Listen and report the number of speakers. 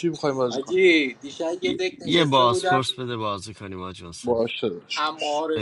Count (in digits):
3